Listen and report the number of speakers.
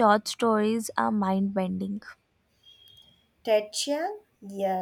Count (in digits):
2